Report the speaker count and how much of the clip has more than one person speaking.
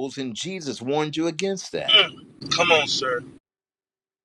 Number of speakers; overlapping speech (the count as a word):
two, about 1%